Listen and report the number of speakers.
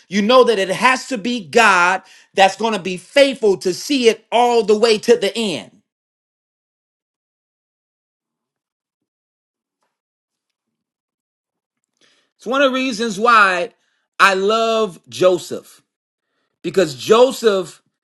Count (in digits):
1